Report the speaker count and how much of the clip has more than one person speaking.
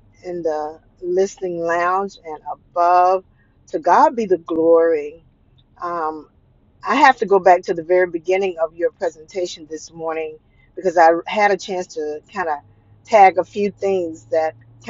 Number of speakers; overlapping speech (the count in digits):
1, no overlap